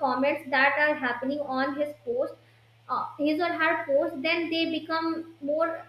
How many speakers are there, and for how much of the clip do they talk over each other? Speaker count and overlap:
1, no overlap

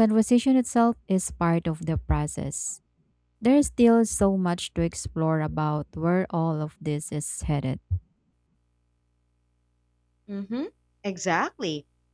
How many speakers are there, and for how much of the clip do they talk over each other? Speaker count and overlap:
2, no overlap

